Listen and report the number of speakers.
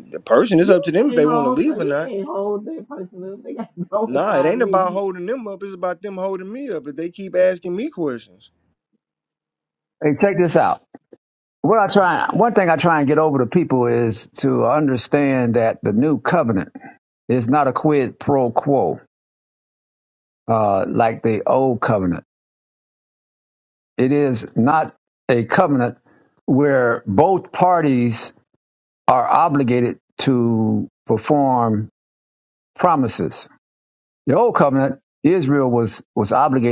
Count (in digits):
3